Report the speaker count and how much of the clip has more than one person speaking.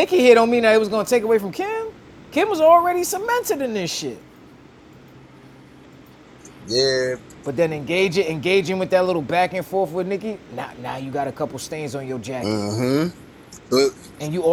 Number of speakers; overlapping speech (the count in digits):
2, about 2%